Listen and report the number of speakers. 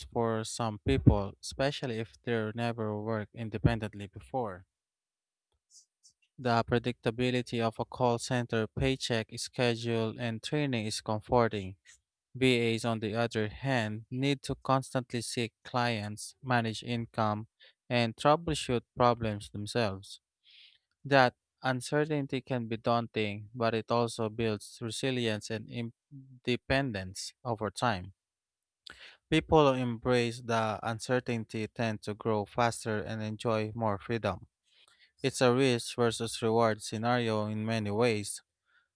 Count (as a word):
one